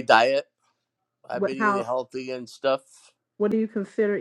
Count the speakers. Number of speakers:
two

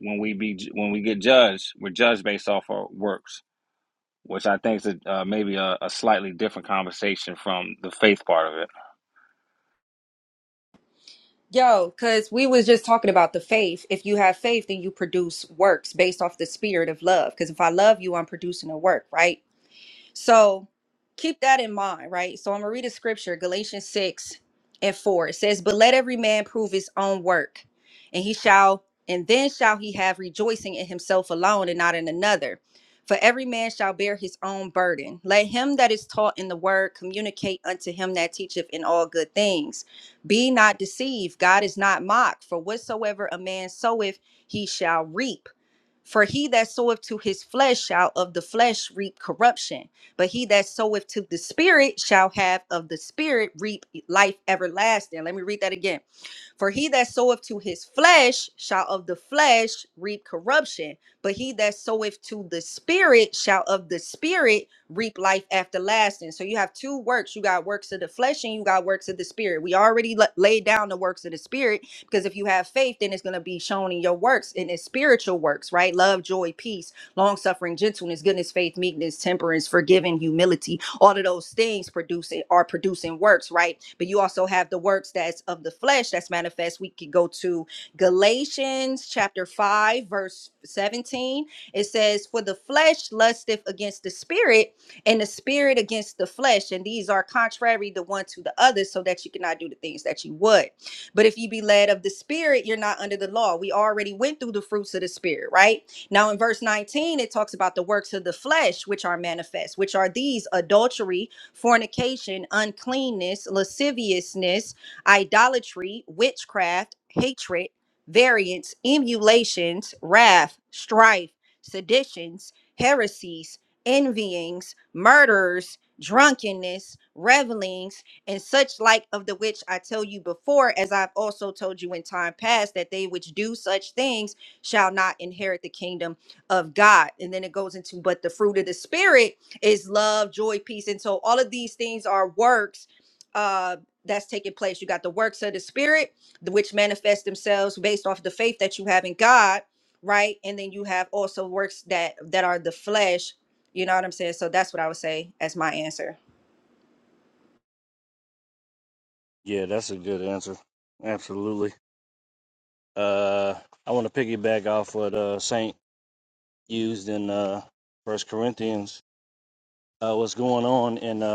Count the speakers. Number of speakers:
three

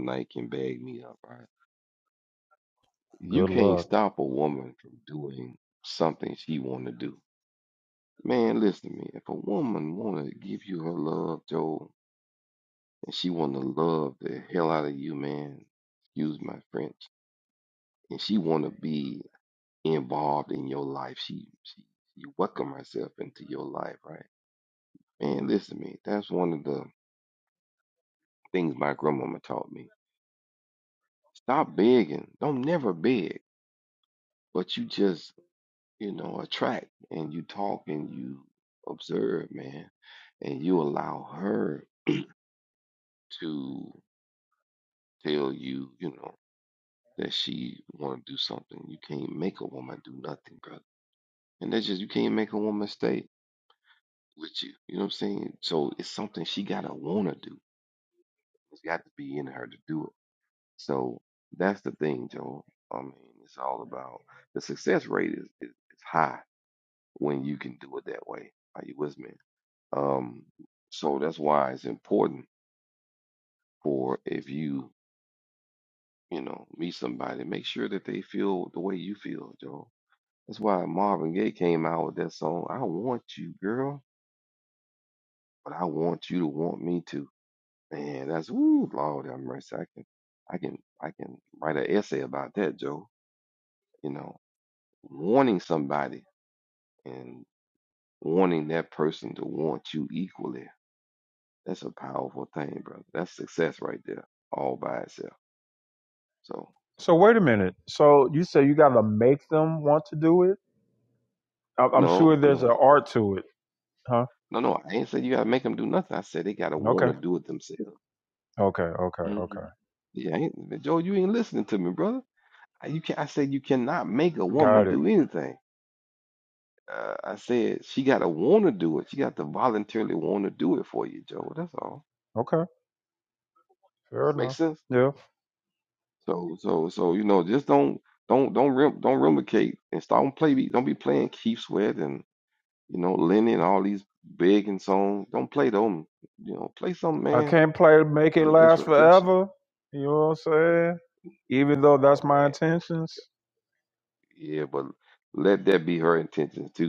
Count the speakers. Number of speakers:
two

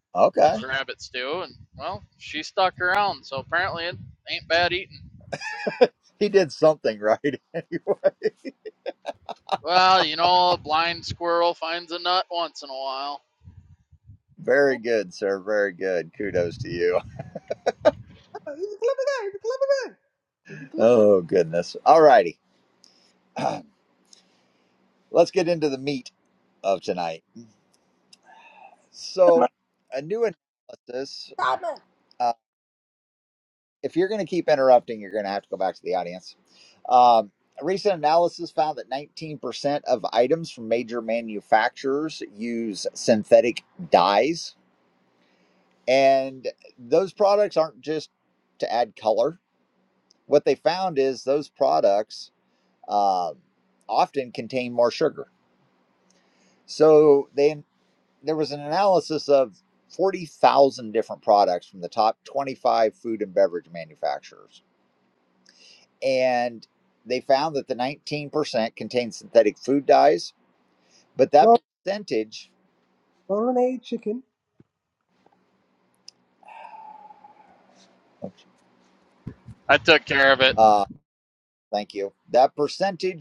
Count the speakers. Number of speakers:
three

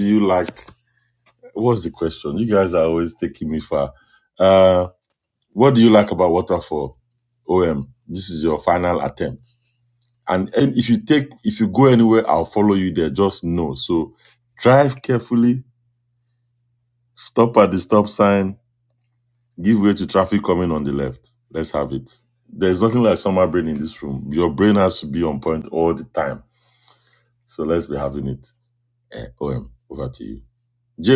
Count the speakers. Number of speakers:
one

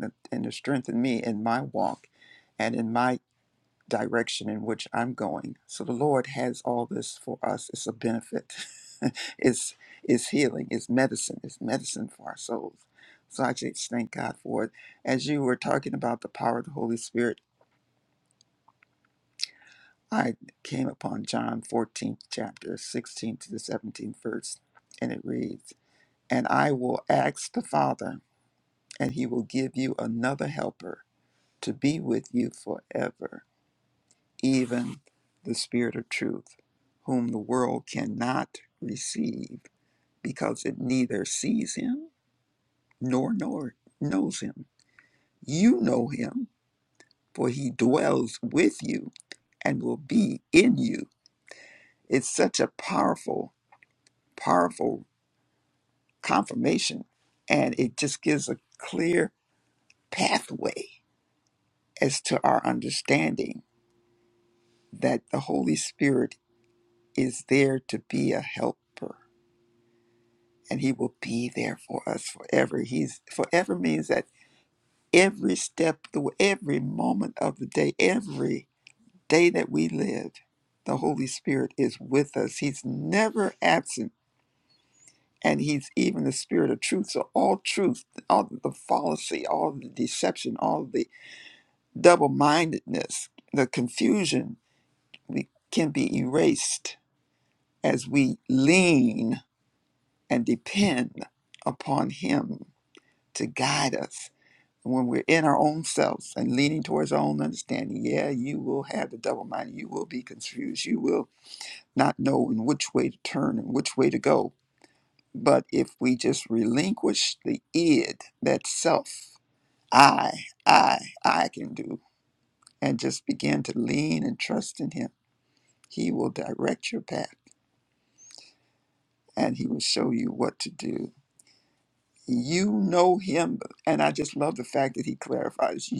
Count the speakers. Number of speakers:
one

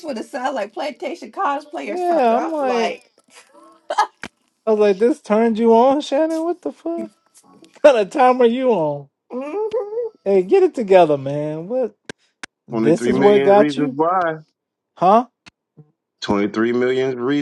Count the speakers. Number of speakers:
three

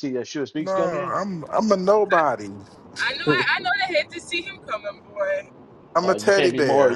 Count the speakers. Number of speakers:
three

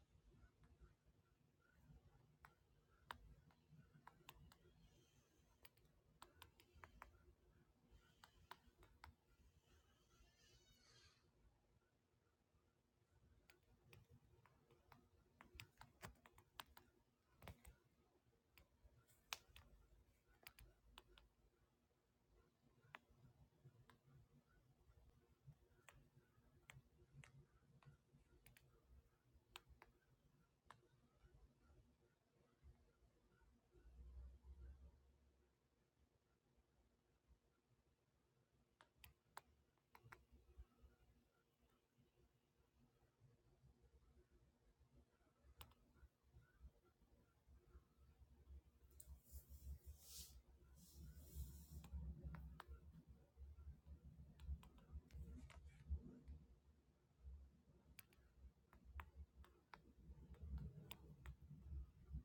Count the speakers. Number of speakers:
zero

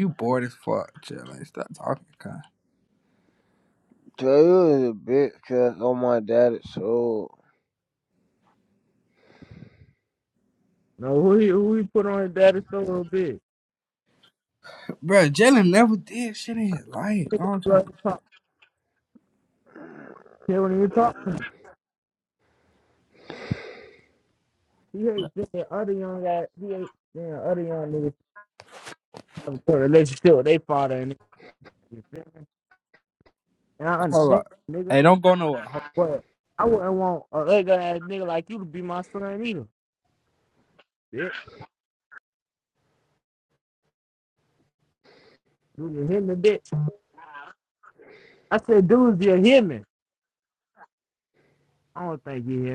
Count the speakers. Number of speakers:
three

